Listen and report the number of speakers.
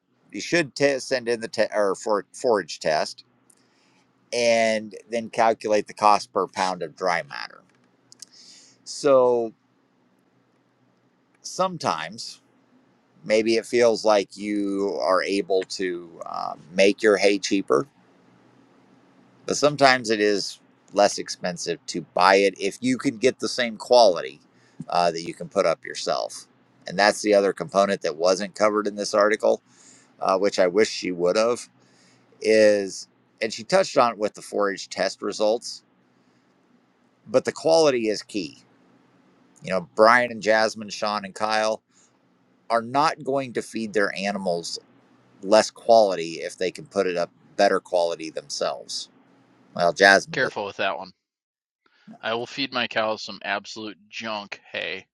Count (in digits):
2